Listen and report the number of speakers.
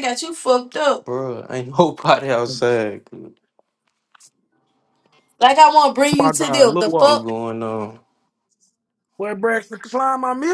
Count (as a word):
three